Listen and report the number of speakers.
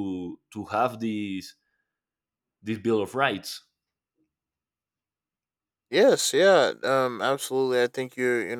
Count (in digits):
2